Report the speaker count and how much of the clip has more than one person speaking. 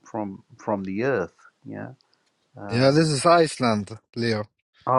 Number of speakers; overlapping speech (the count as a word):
two, about 6%